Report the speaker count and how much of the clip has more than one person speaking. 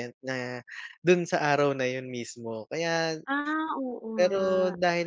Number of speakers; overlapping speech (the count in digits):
2, about 12%